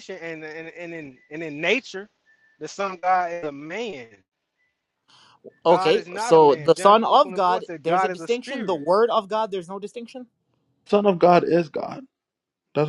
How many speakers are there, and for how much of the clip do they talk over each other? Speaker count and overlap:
3, about 24%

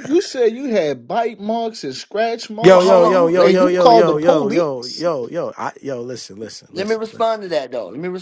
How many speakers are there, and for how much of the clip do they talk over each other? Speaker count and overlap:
3, about 32%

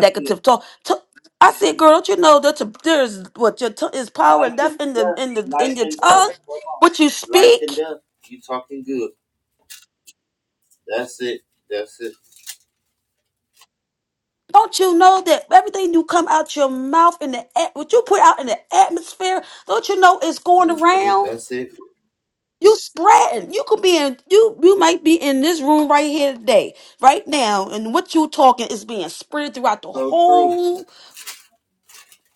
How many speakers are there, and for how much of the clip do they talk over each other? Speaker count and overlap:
2, about 13%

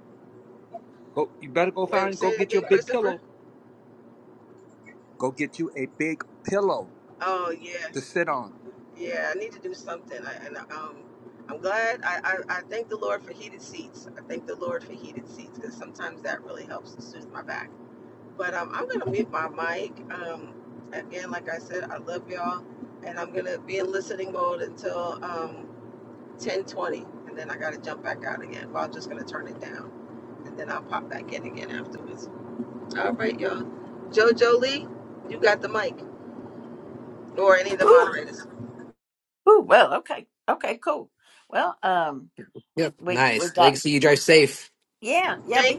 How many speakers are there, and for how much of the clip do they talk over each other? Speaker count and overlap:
4, about 6%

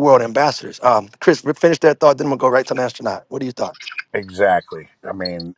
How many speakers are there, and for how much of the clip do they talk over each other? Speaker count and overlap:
2, no overlap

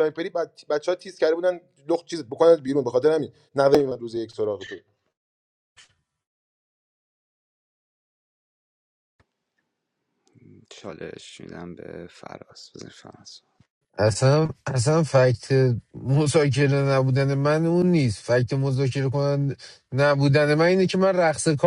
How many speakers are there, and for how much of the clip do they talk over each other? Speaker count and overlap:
3, no overlap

